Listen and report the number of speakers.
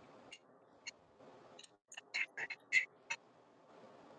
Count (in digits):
0